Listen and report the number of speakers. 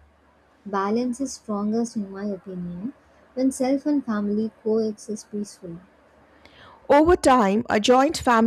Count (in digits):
2